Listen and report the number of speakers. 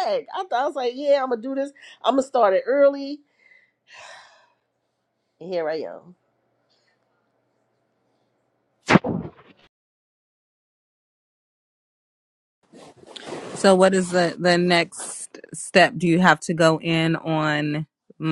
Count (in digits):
2